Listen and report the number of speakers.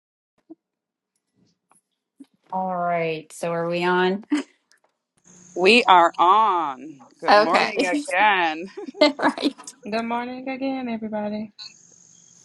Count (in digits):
3